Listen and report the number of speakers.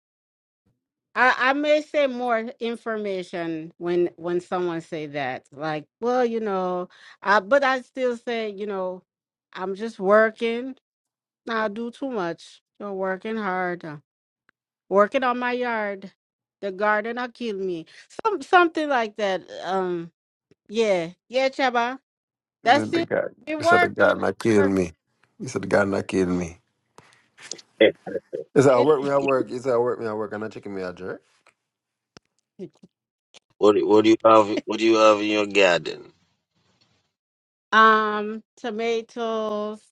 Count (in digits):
3